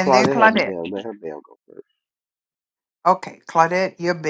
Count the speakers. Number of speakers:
2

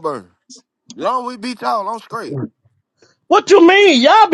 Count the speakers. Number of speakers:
2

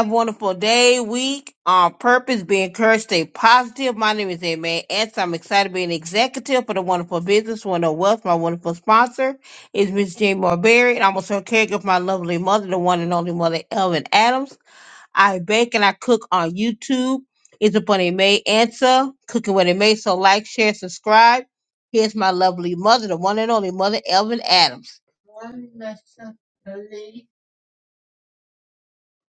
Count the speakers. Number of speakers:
1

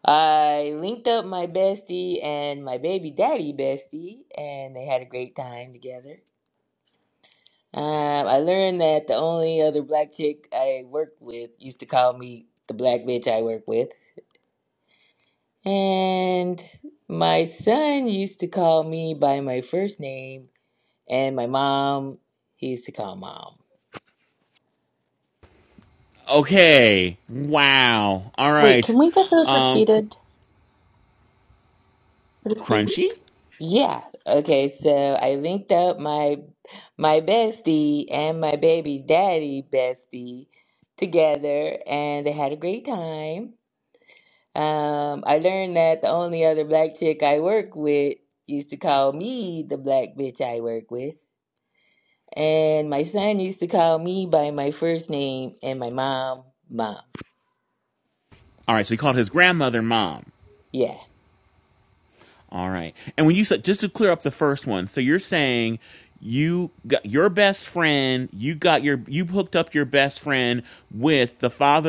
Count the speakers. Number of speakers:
3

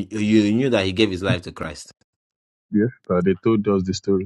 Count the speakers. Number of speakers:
2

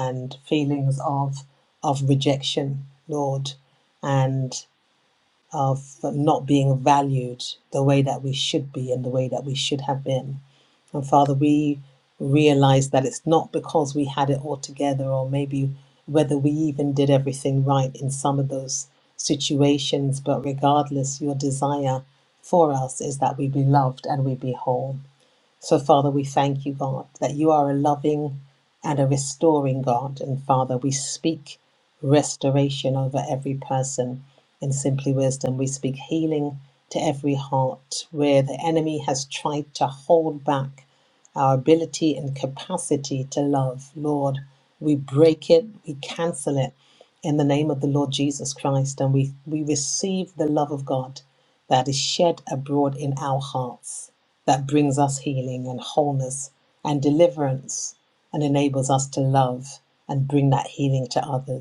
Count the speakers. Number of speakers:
1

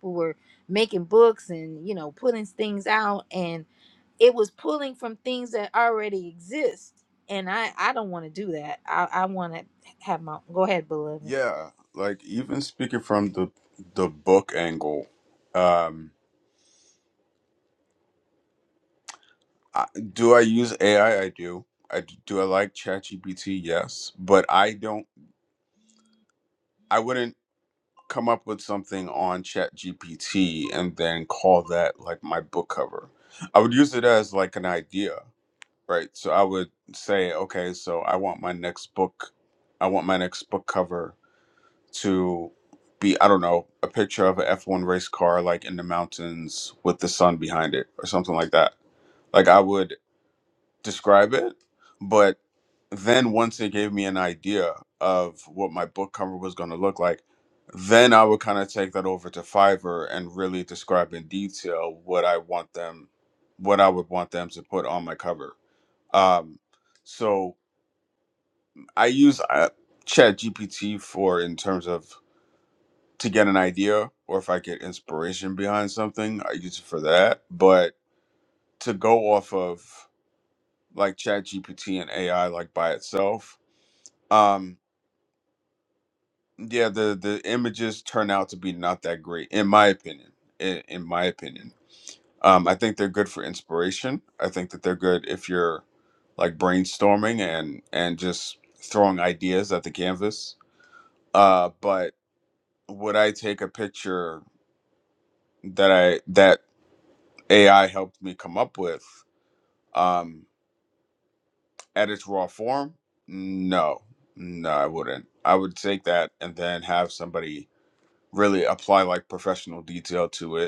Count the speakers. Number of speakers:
2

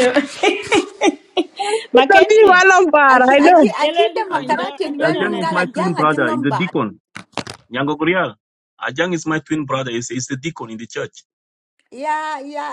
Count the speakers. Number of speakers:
4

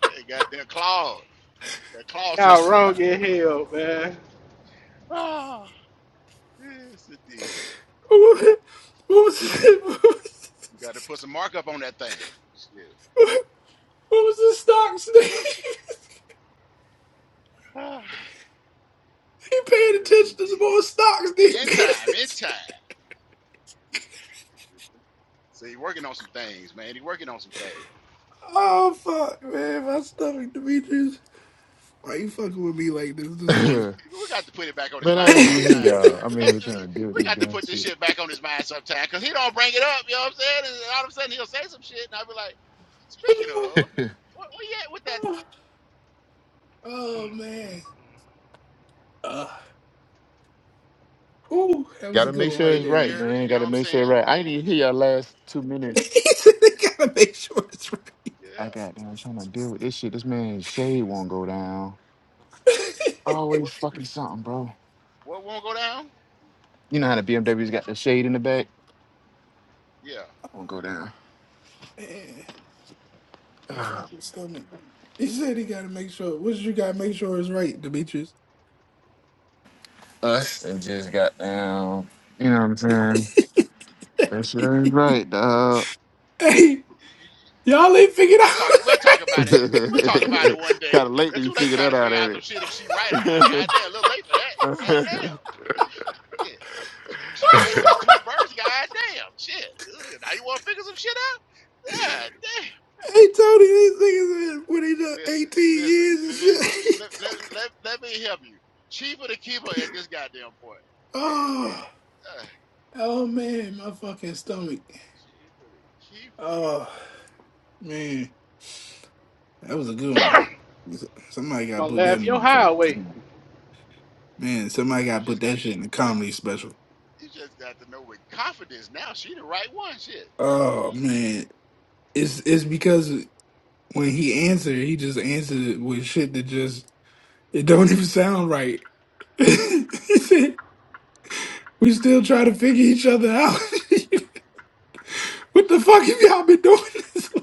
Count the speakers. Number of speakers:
4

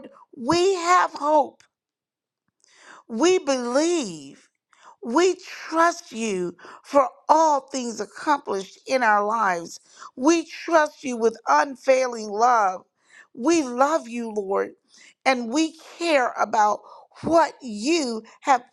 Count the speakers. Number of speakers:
1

